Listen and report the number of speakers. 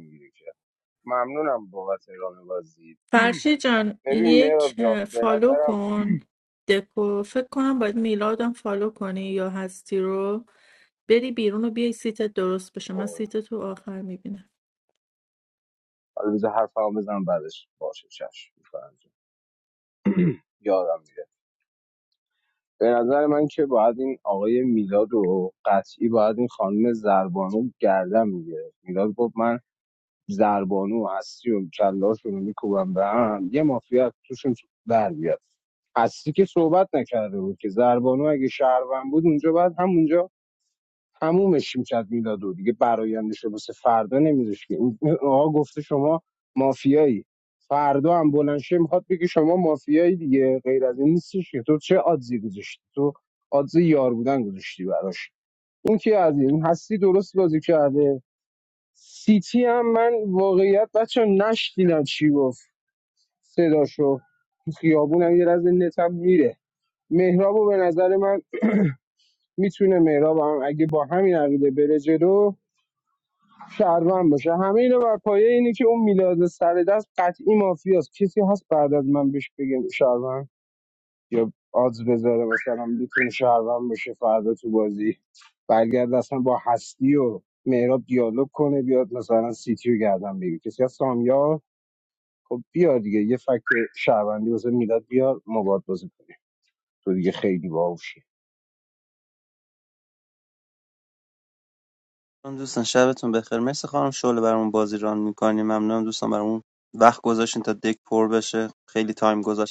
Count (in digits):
3